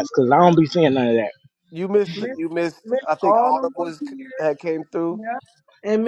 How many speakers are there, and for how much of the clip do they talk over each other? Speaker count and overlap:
3, about 41%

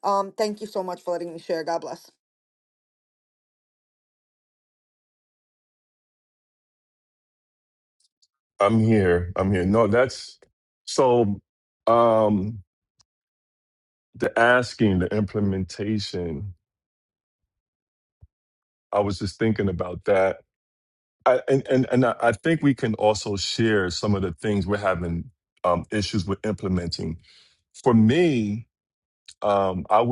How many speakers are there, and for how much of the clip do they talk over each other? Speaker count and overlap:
2, no overlap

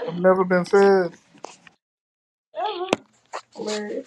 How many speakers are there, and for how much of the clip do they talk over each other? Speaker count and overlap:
2, about 2%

